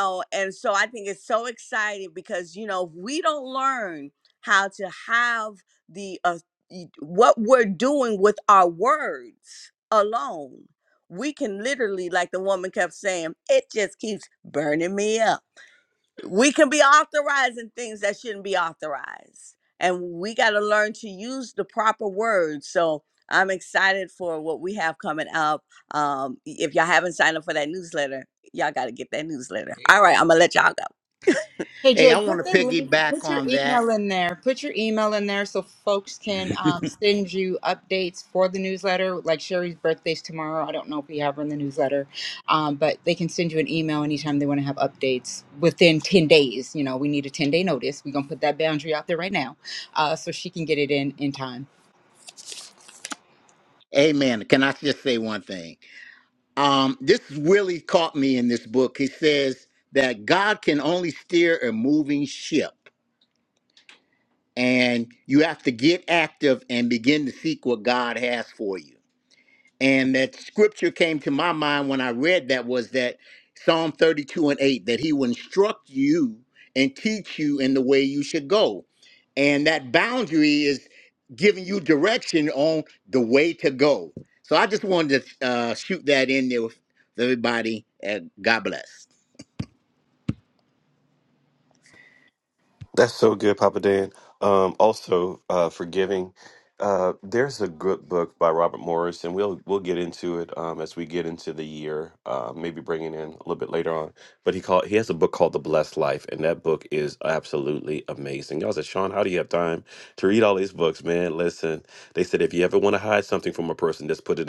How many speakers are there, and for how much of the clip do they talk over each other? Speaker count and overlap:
4, about 2%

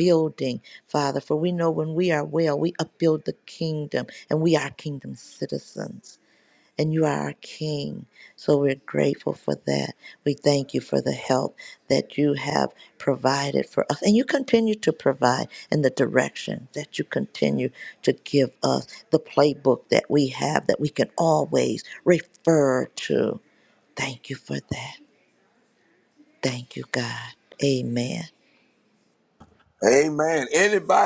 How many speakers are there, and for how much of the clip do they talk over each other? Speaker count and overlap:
2, no overlap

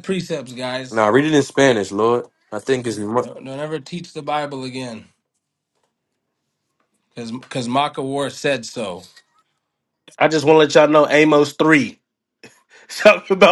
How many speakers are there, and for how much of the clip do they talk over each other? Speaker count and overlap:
3, no overlap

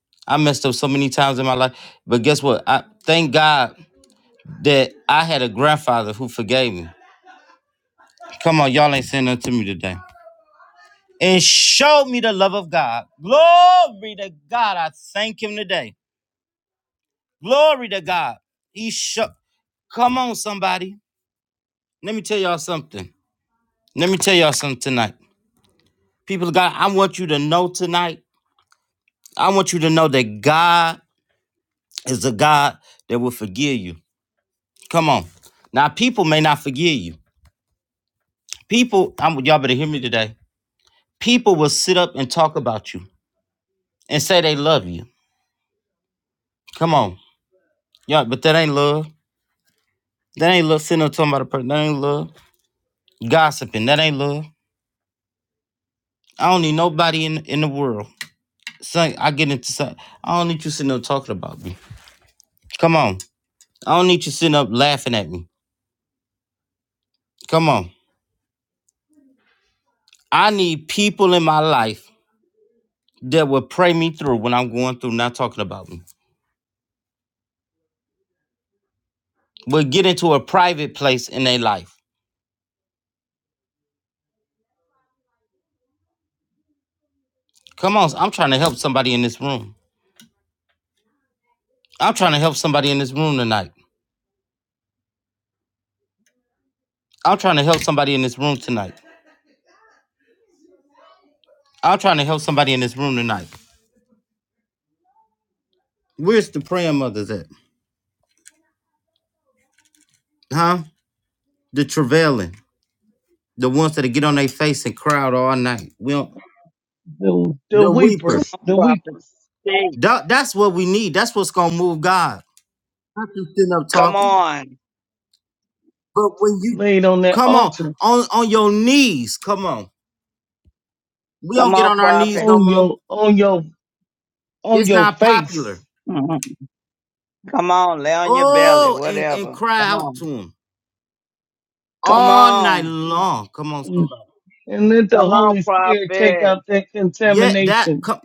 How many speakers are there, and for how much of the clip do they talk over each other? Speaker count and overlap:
3, about 6%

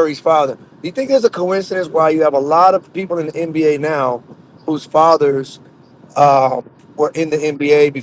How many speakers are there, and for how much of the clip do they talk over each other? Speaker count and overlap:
1, no overlap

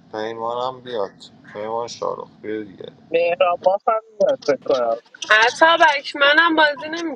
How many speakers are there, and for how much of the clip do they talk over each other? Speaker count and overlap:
3, no overlap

